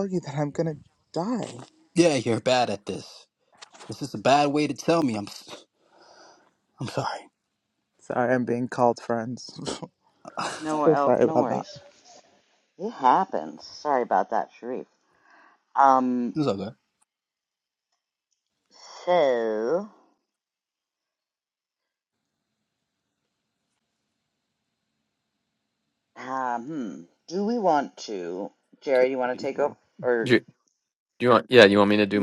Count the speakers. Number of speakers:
4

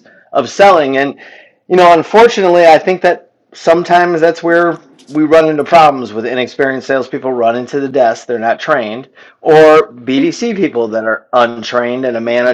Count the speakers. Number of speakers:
1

